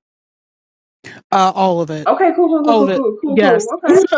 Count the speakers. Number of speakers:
two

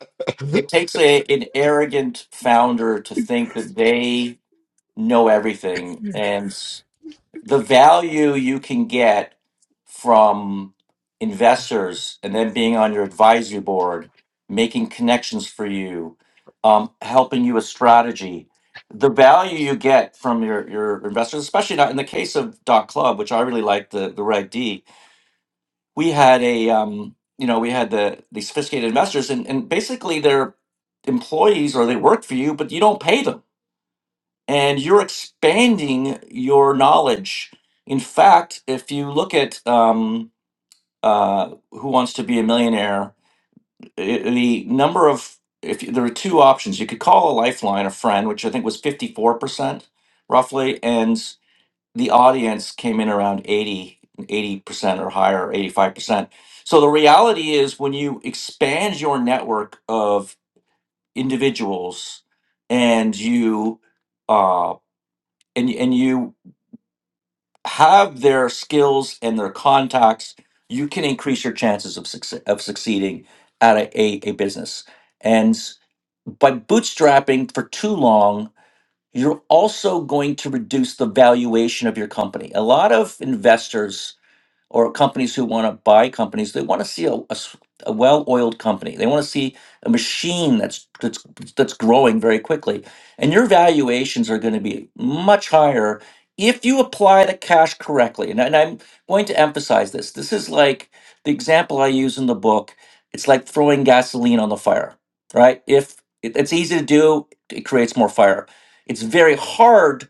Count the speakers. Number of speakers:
one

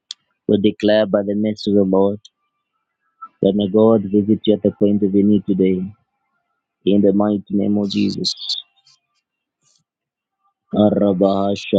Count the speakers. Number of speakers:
one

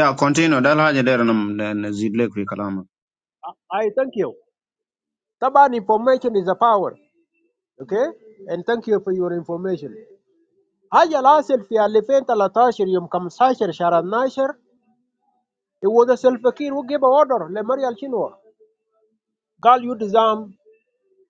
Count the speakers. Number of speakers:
two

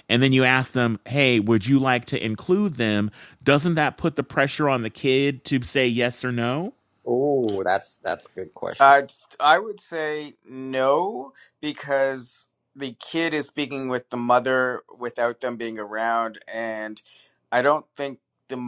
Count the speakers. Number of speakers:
three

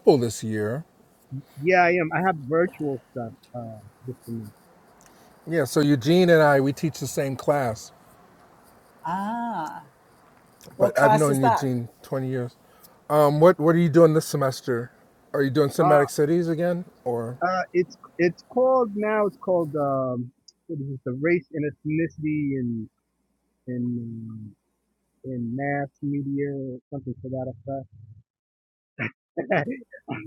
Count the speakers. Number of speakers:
three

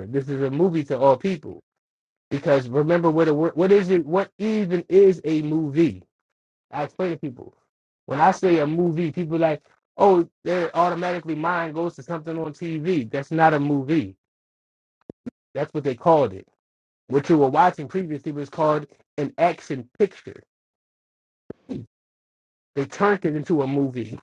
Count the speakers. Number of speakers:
one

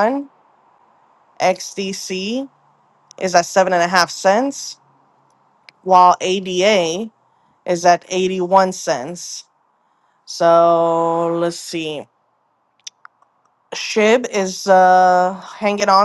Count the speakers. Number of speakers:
one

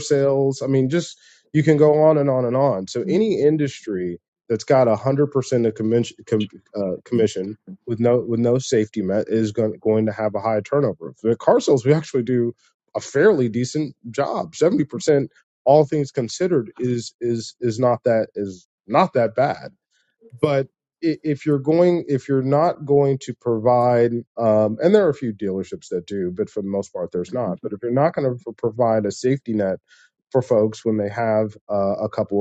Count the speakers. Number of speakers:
one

